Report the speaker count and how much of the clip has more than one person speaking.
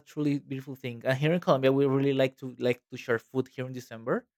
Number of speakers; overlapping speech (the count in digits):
1, no overlap